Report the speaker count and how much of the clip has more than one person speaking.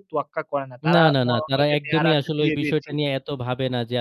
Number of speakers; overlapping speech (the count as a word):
two, about 51%